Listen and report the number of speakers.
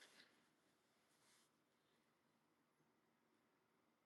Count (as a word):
zero